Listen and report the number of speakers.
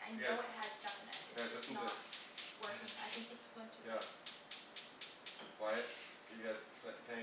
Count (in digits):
2